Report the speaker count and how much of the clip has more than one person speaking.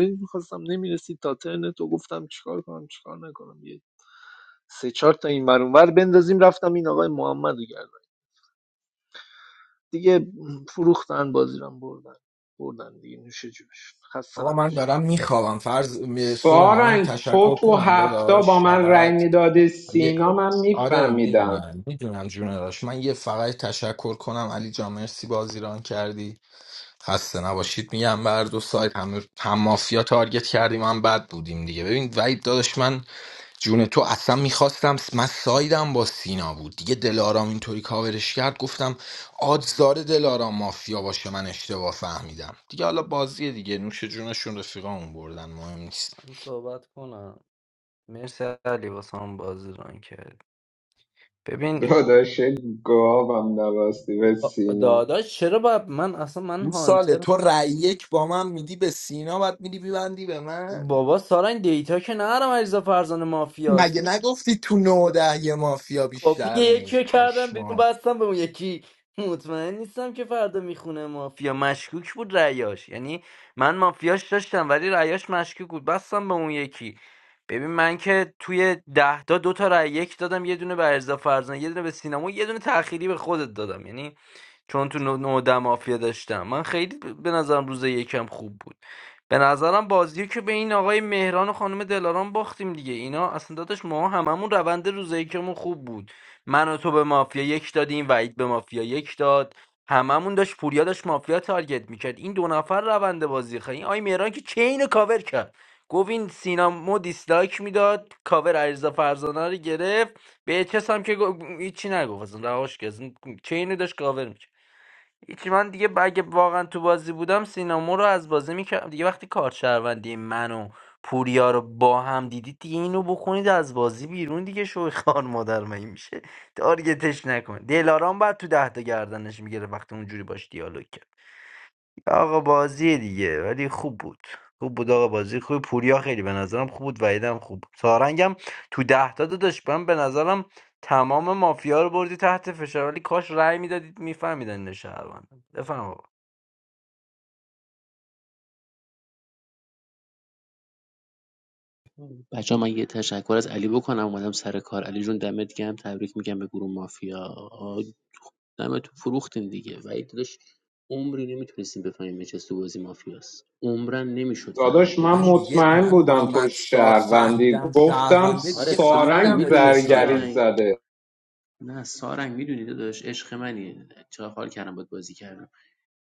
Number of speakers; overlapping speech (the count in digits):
5, about 7%